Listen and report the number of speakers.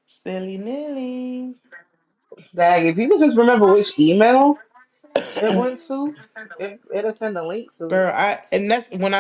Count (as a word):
two